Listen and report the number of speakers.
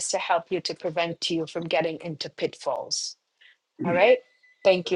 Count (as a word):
one